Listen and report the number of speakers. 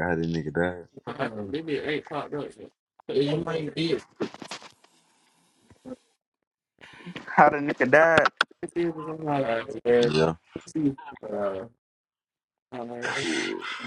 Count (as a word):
three